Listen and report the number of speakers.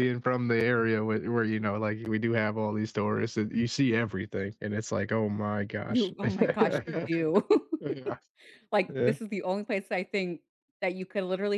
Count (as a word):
two